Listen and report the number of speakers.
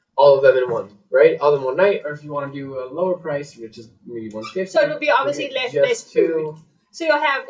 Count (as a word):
two